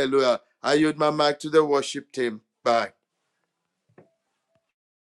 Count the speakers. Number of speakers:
1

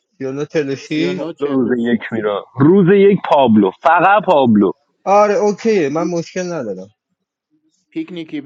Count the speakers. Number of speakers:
3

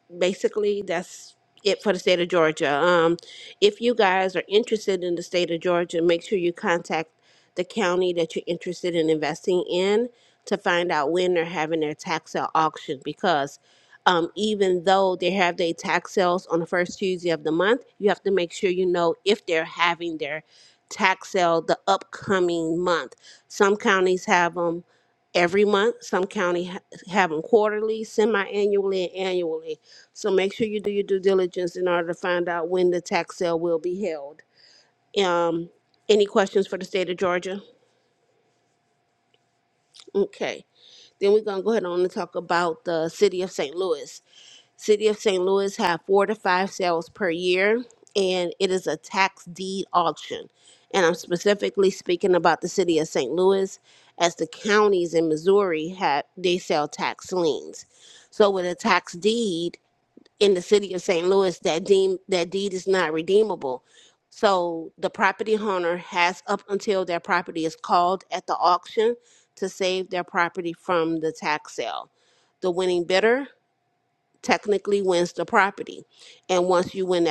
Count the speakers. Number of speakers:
1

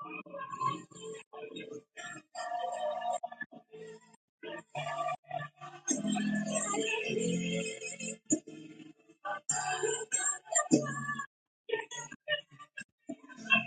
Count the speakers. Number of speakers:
0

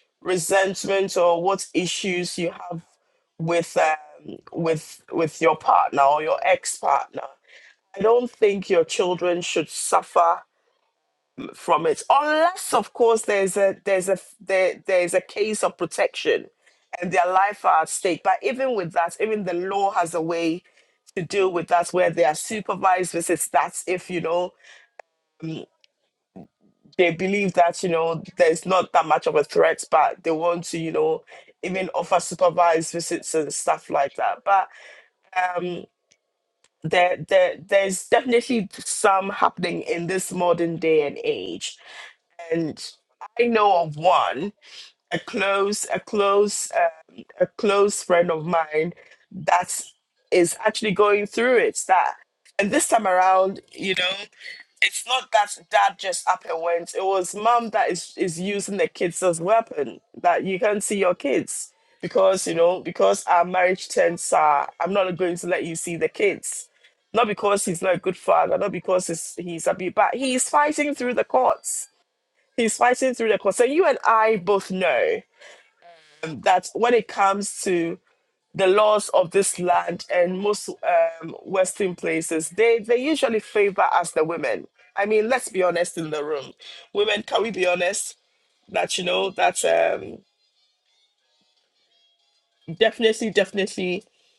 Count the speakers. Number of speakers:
1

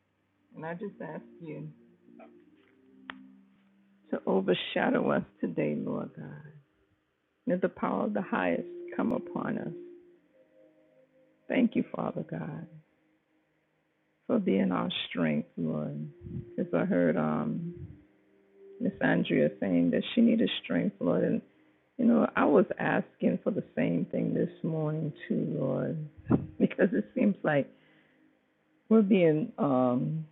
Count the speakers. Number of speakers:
1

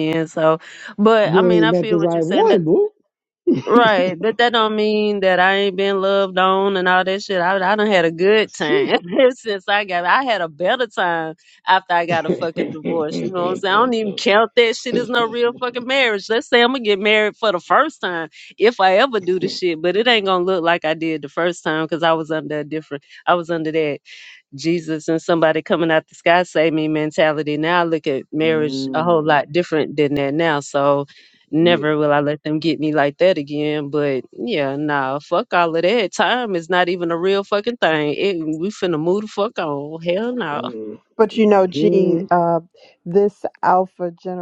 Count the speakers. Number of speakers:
3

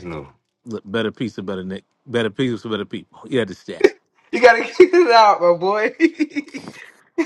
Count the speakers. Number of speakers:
2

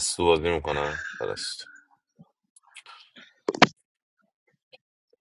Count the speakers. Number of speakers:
1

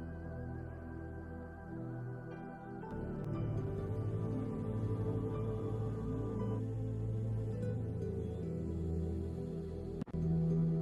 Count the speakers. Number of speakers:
0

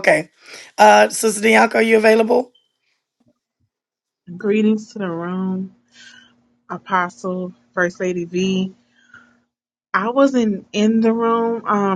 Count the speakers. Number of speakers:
2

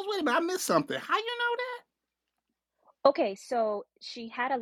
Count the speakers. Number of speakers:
2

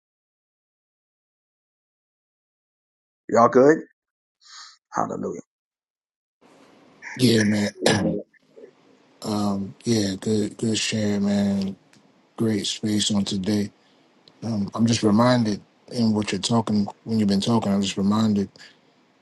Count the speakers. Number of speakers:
2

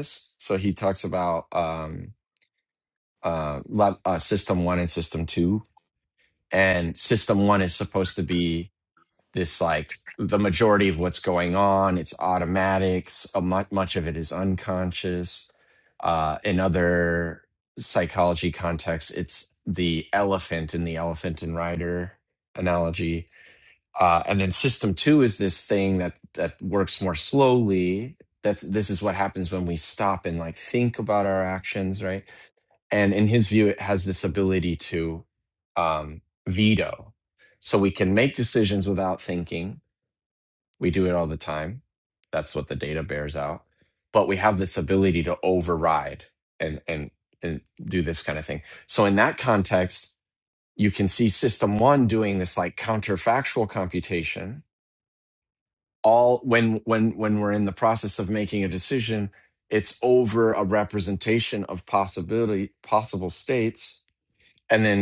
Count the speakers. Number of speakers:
1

